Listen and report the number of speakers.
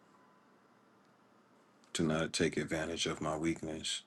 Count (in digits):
1